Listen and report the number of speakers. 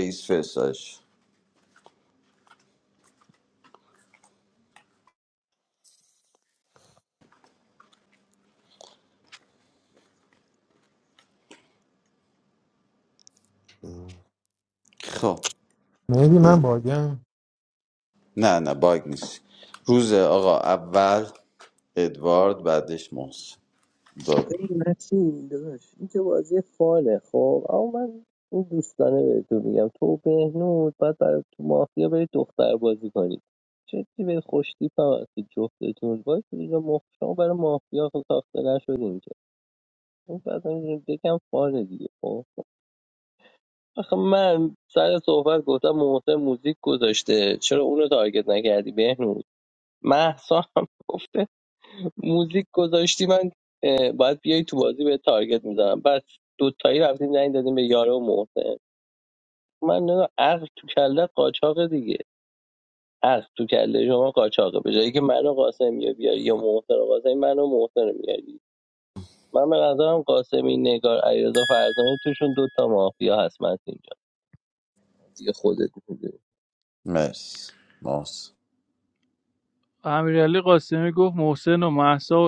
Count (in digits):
4